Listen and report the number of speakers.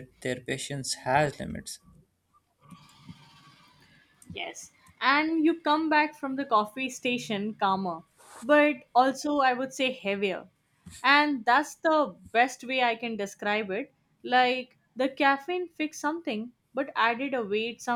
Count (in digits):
2